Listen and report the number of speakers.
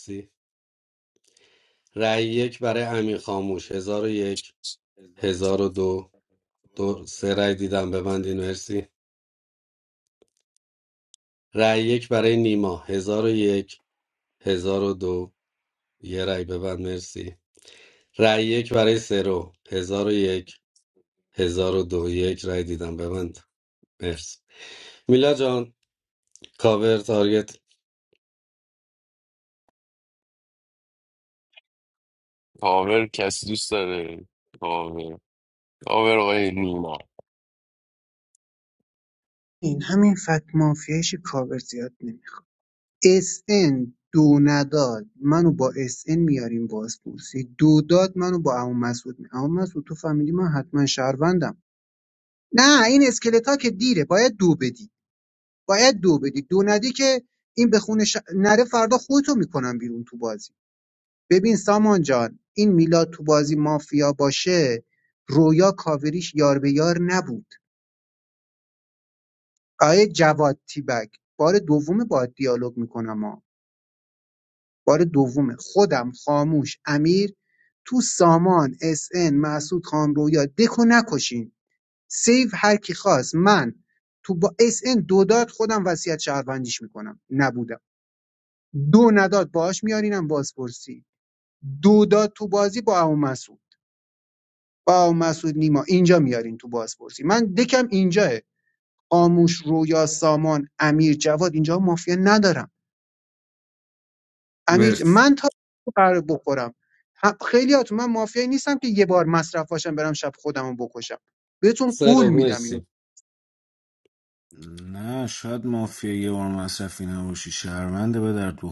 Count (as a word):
four